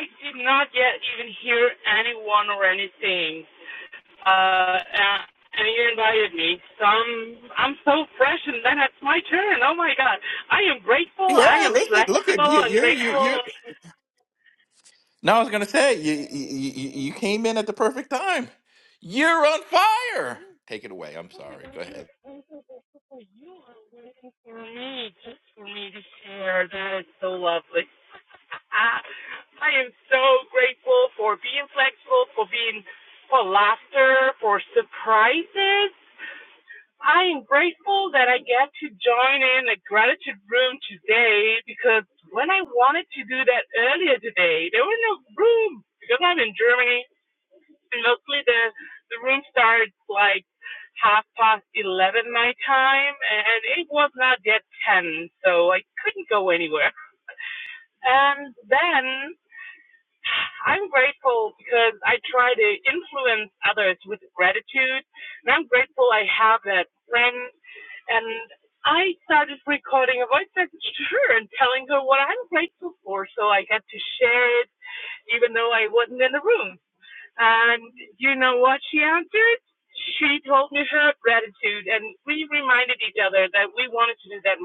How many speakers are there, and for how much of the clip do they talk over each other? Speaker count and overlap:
2, about 2%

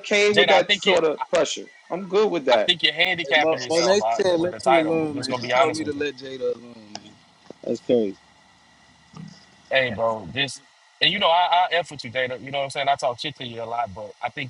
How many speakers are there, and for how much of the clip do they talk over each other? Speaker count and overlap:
3, about 25%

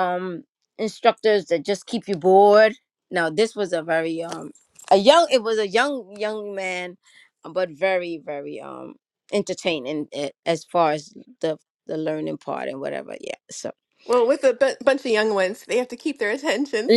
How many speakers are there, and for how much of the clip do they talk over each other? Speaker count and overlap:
2, about 1%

